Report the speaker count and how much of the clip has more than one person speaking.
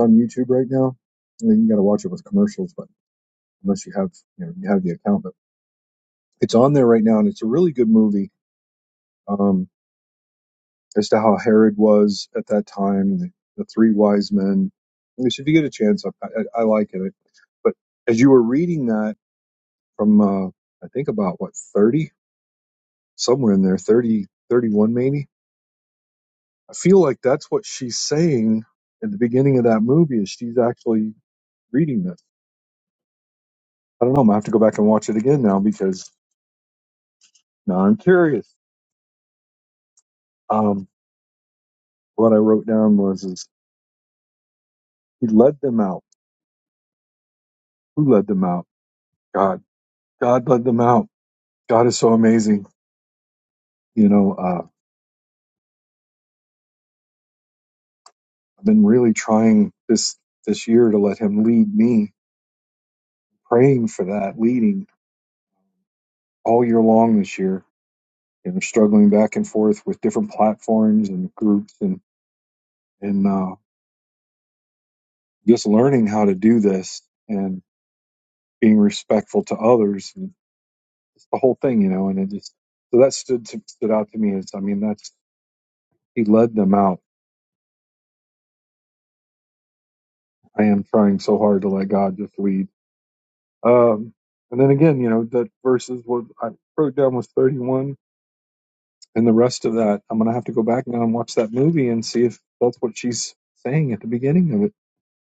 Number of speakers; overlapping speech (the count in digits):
1, no overlap